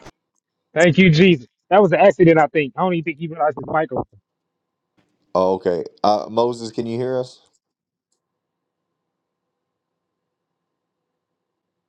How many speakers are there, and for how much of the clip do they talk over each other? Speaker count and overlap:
2, no overlap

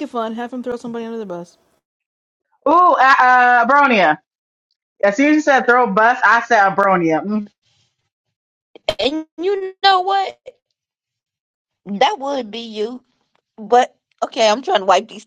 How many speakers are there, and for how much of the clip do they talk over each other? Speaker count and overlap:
3, no overlap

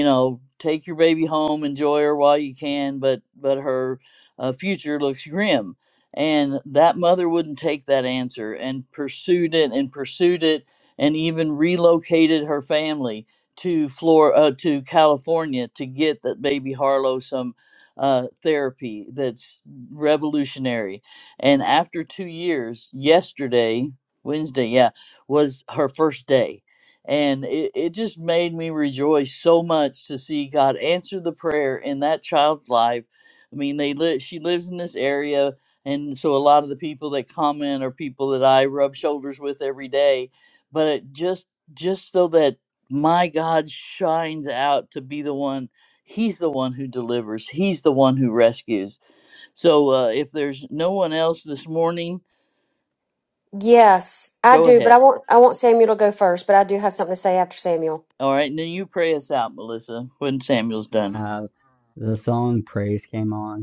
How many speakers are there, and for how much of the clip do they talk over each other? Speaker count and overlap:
3, about 1%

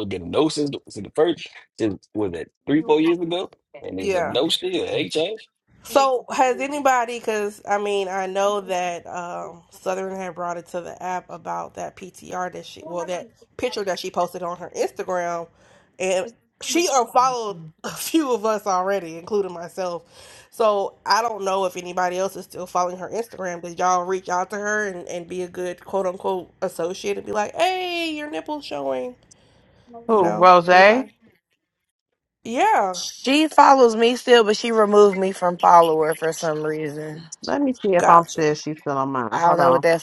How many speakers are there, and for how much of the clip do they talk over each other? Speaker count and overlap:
4, about 5%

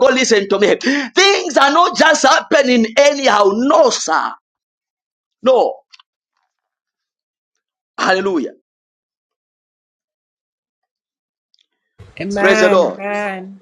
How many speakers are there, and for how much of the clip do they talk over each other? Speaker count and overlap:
2, about 4%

